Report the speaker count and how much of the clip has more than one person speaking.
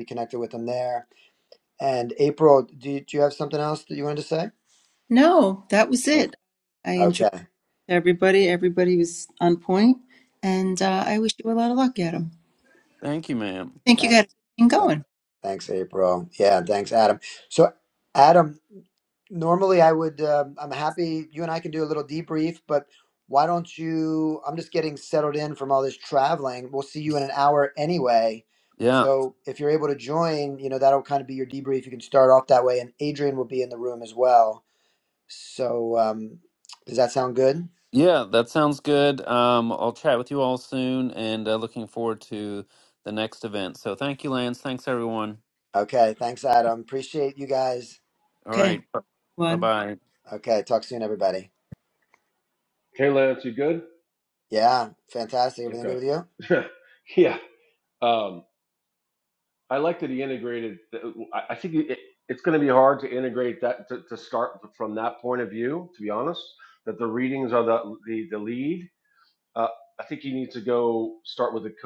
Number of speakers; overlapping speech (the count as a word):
four, about 2%